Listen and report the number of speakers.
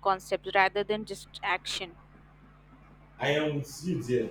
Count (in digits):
2